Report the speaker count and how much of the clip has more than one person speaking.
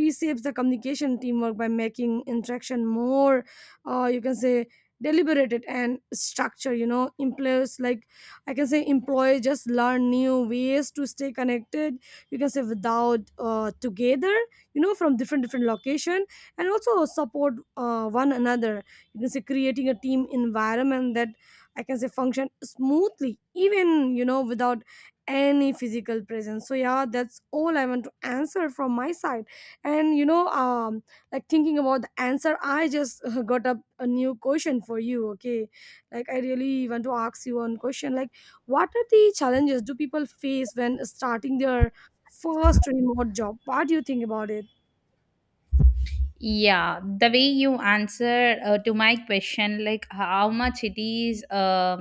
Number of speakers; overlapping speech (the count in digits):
2, no overlap